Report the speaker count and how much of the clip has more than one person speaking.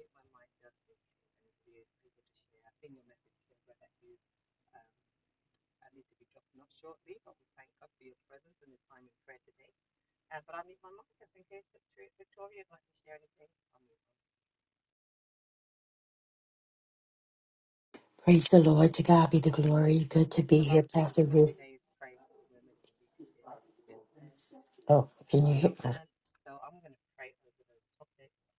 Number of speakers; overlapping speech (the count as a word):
two, about 7%